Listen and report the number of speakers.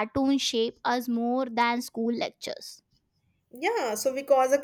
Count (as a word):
two